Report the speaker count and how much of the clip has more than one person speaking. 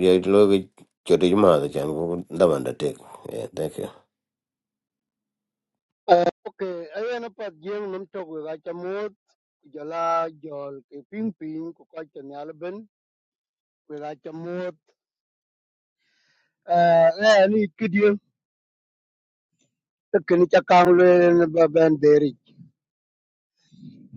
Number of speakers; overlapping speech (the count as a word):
two, no overlap